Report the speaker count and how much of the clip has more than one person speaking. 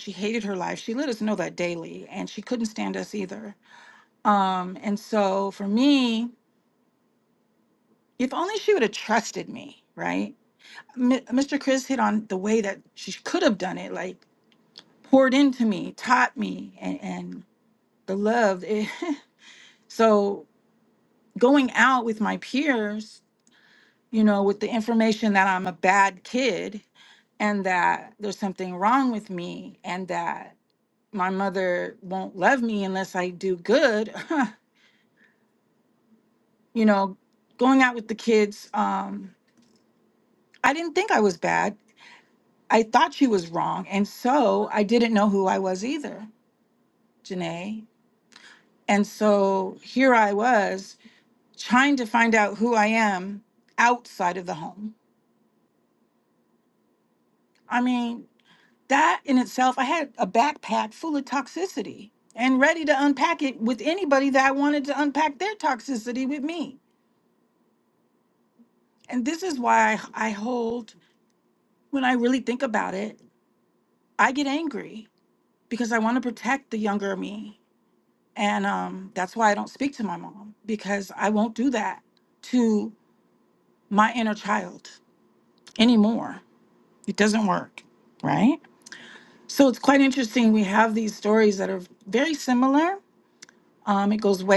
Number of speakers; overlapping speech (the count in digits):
1, no overlap